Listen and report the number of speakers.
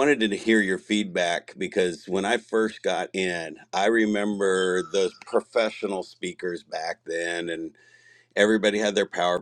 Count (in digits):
1